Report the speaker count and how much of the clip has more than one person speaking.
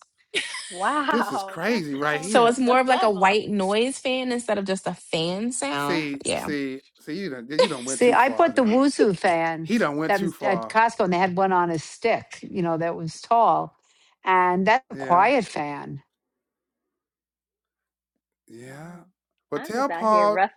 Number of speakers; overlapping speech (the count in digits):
4, about 25%